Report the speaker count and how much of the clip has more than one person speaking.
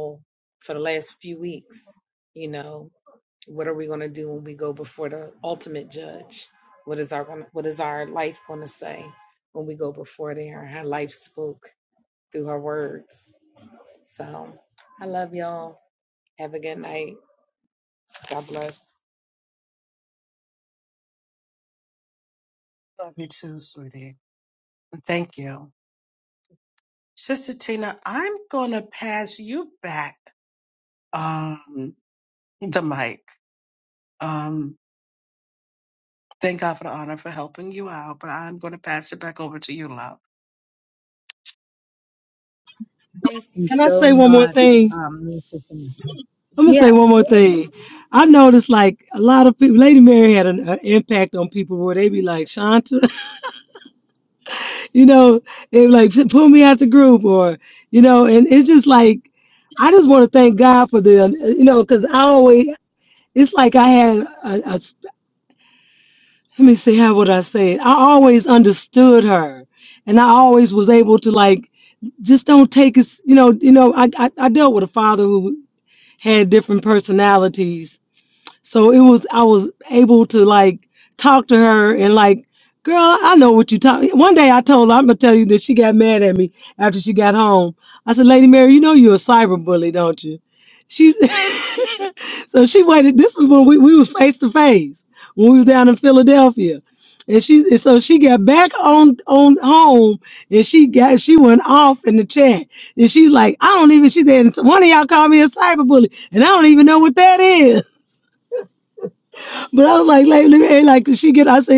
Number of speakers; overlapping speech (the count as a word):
four, about 1%